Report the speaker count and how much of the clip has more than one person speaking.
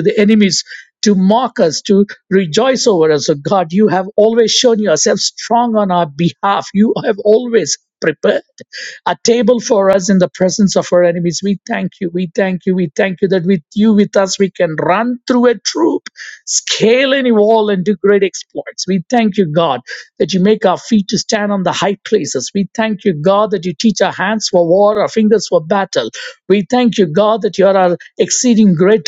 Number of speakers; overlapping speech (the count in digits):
1, no overlap